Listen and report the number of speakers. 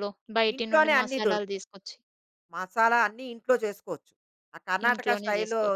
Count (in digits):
2